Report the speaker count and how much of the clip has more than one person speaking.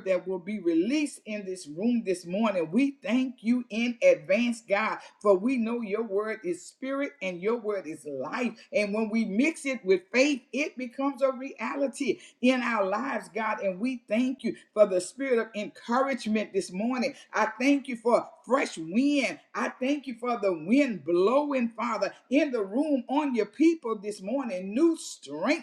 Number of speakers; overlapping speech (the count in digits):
1, no overlap